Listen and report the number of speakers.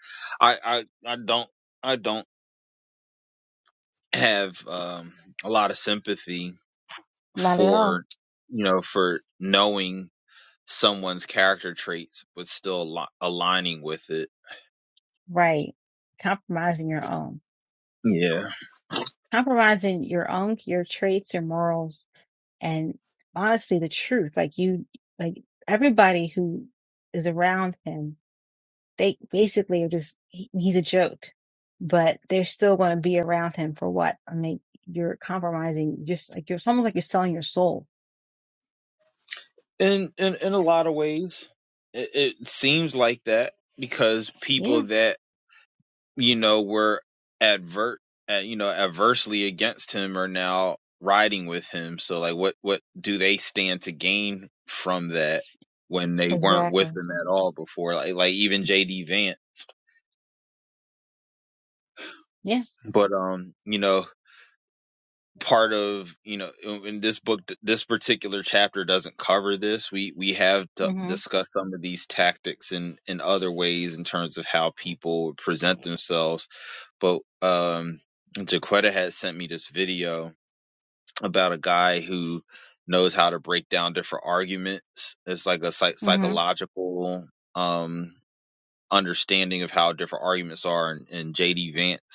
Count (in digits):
2